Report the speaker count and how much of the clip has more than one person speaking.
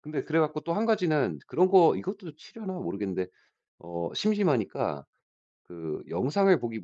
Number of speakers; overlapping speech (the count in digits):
1, no overlap